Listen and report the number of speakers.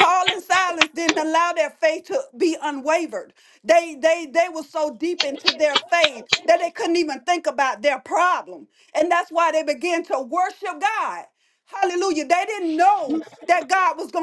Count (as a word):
one